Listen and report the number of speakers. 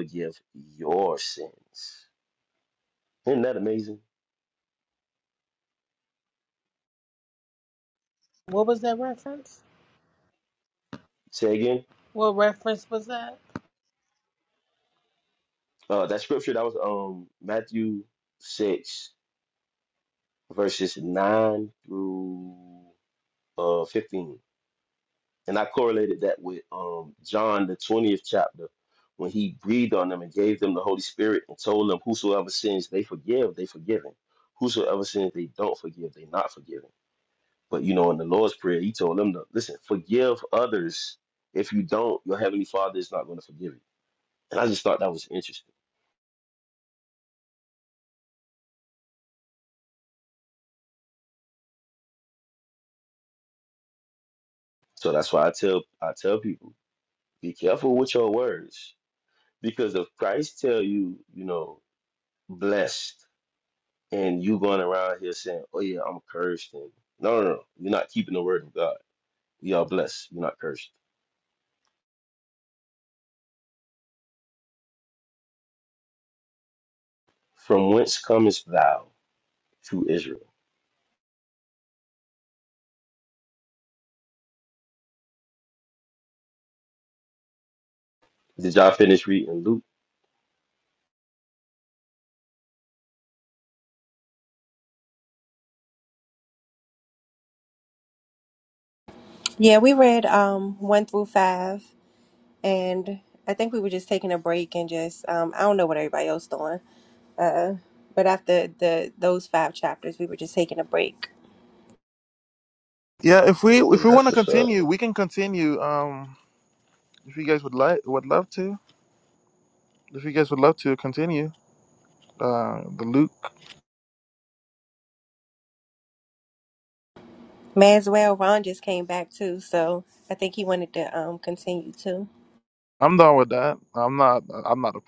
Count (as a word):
four